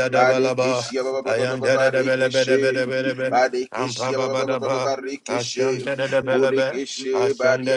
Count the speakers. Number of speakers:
2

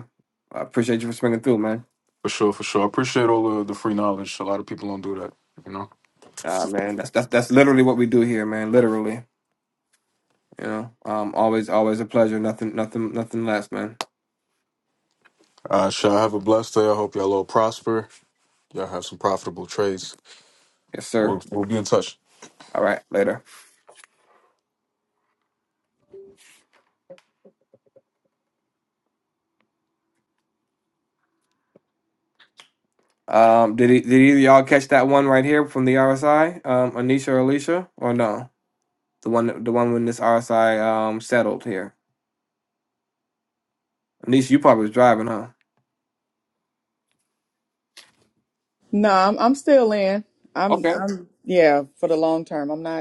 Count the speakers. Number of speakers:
3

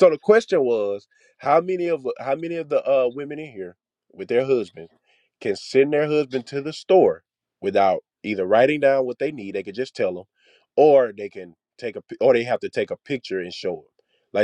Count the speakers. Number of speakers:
1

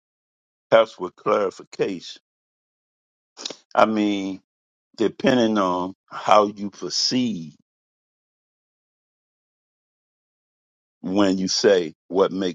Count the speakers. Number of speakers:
1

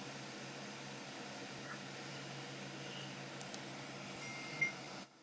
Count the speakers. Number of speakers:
0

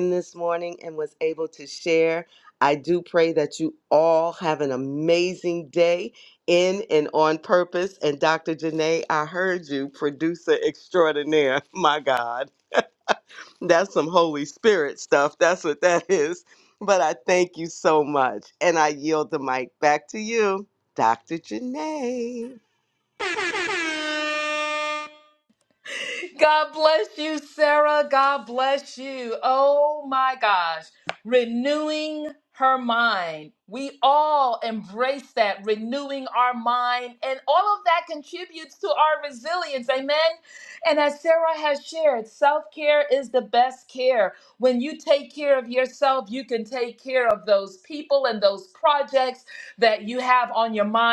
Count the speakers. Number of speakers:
2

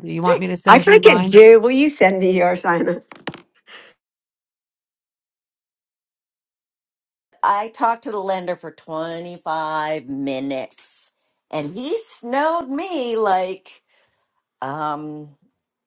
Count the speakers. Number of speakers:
3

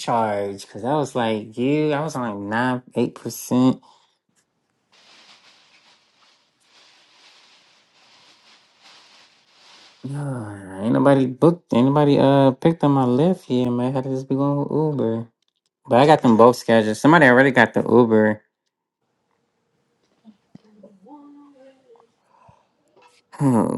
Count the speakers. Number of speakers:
1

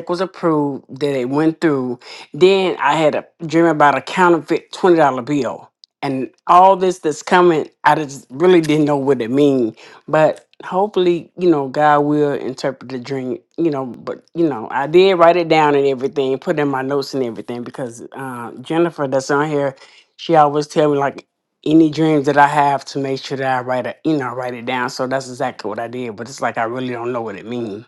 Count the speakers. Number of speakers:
1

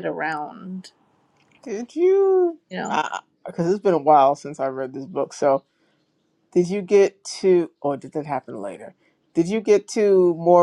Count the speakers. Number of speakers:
2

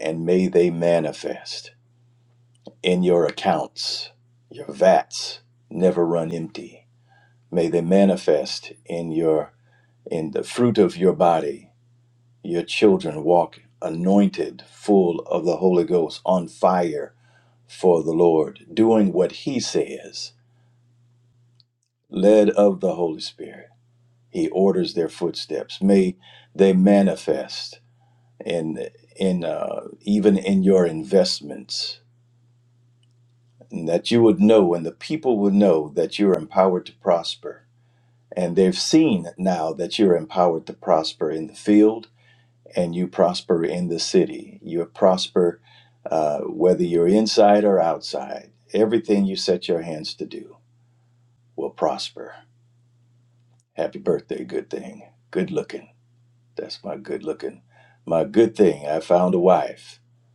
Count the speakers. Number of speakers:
1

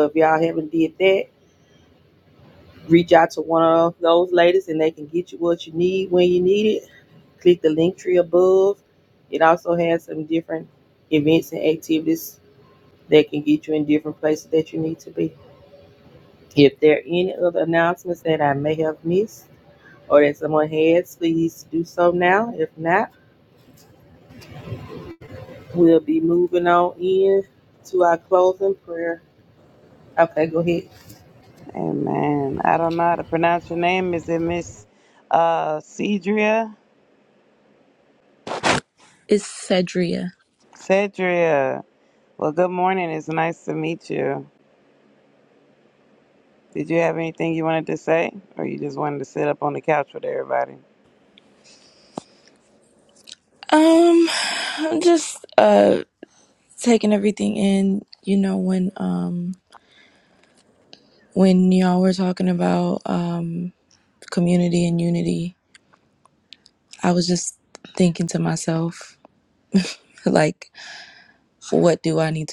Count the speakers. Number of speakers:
3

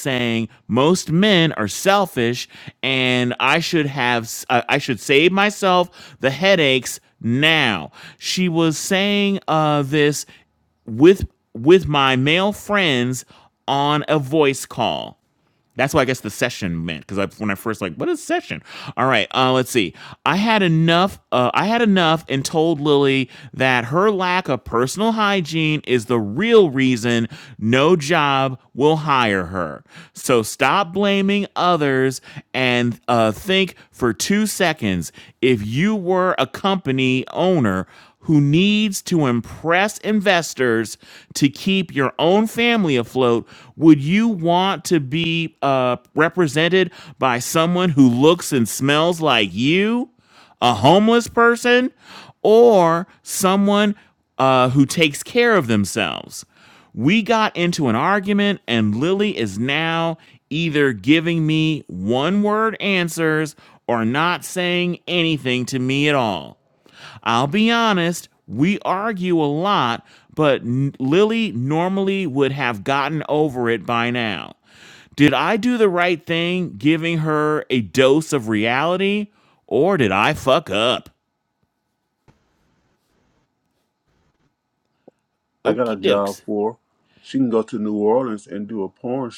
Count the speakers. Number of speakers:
2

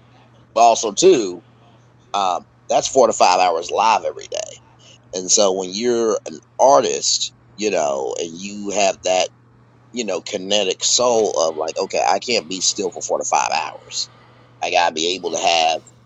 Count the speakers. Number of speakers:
1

